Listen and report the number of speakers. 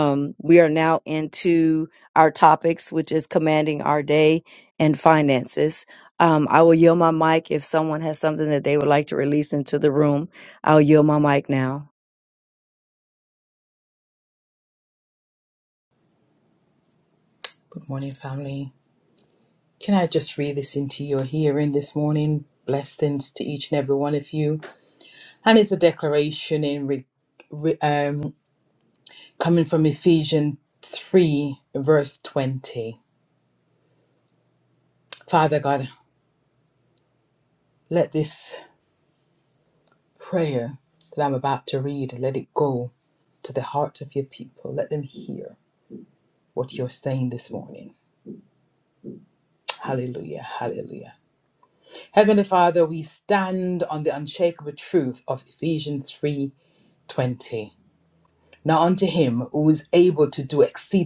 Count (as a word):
two